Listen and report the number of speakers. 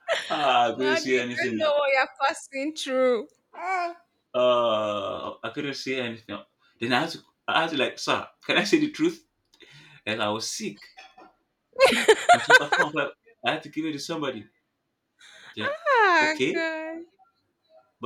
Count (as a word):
two